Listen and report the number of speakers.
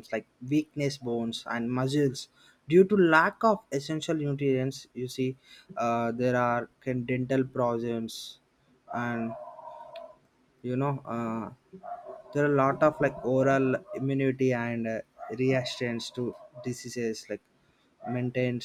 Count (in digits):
1